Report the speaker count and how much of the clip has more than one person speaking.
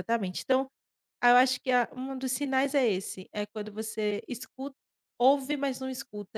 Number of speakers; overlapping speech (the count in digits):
1, no overlap